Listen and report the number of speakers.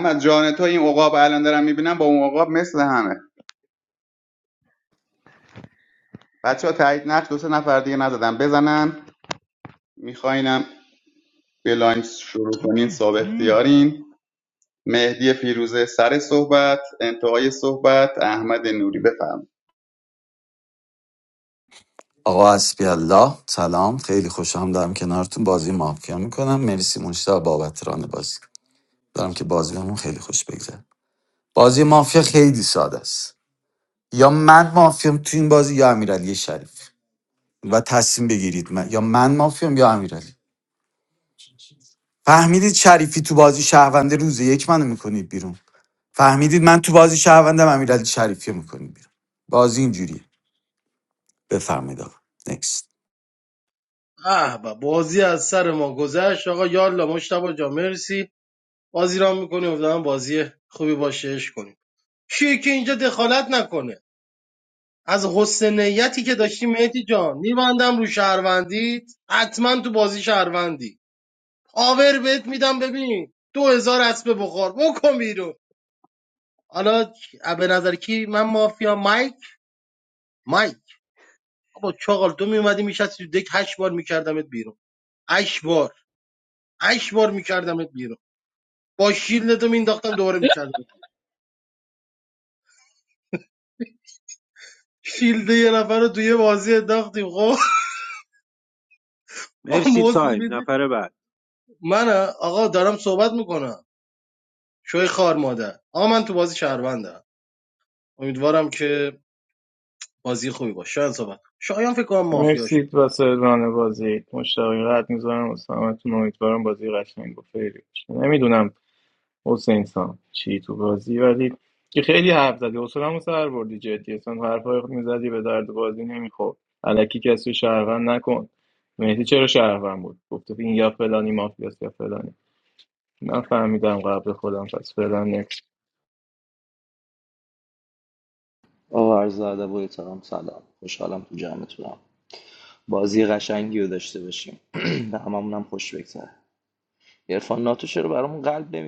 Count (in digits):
6